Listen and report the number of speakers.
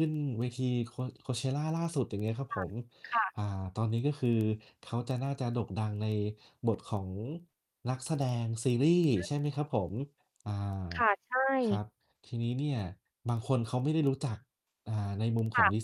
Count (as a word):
two